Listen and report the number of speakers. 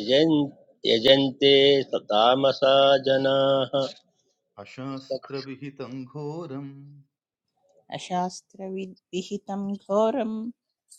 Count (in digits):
3